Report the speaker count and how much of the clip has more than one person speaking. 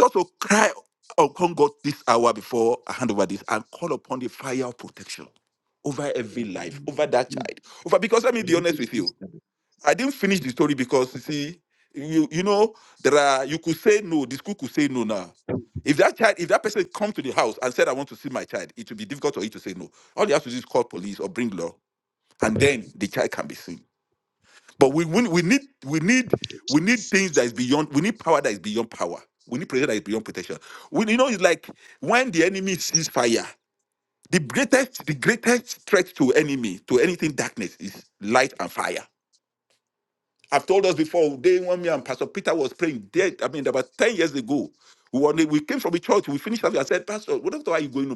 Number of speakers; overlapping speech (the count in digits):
1, no overlap